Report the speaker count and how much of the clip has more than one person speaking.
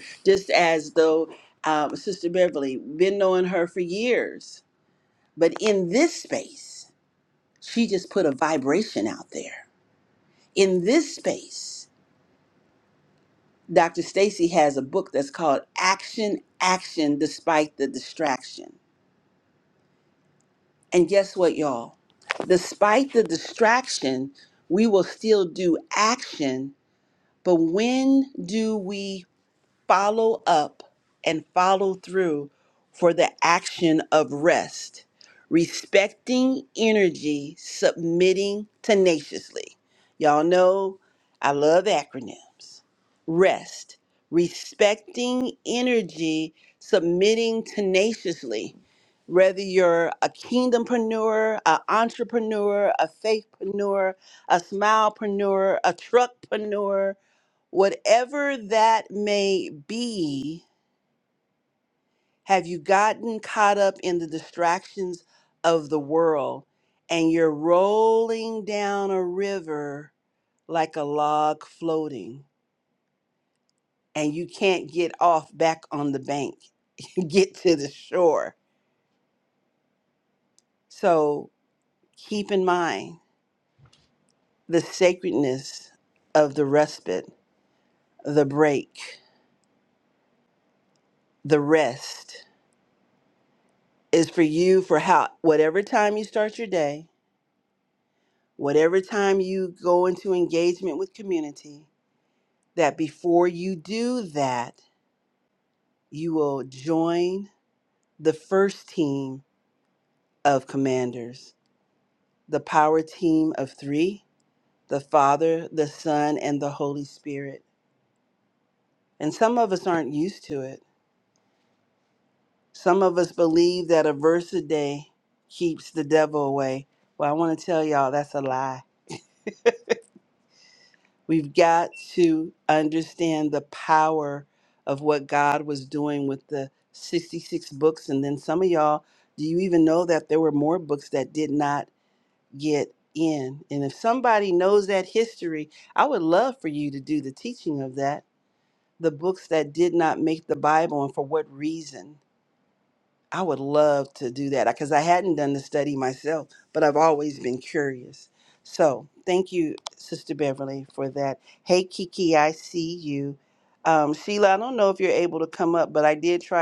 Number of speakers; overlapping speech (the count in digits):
1, no overlap